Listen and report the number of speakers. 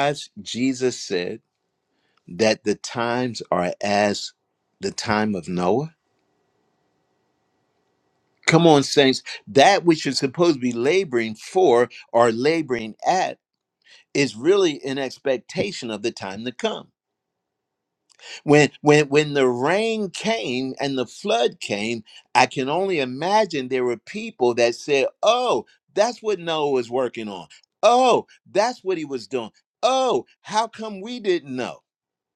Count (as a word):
one